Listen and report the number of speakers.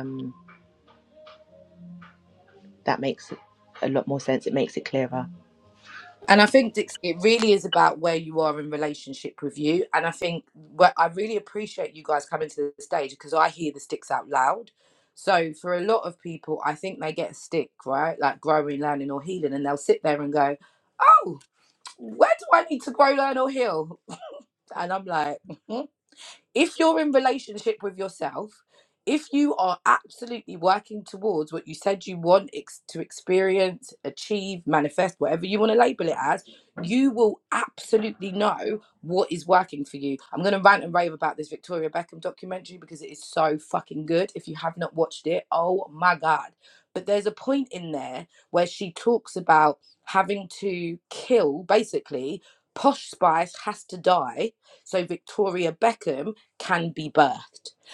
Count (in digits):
2